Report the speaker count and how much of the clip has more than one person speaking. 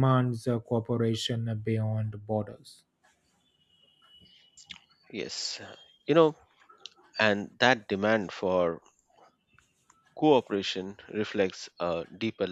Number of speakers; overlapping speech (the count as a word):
two, no overlap